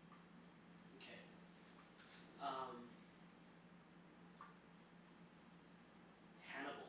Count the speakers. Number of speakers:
one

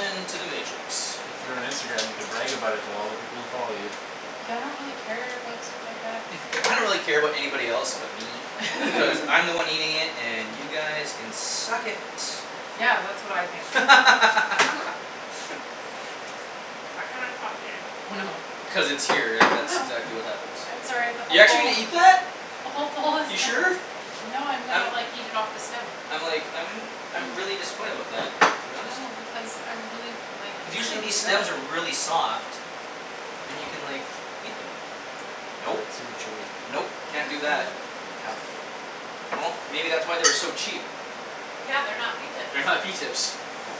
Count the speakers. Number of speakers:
four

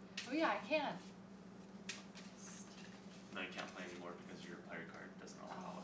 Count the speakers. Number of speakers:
two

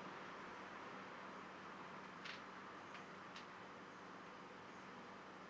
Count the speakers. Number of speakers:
zero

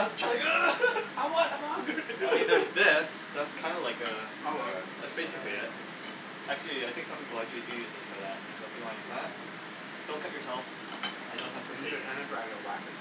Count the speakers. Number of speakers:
three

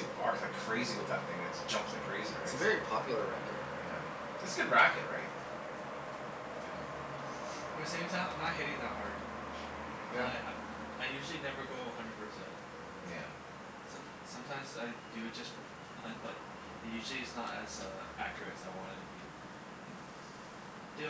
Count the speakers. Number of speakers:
three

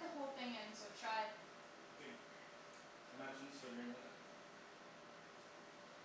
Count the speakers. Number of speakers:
two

